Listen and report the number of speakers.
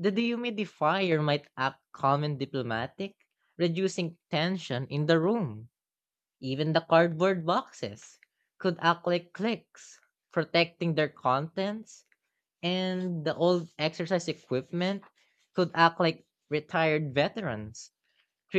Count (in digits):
1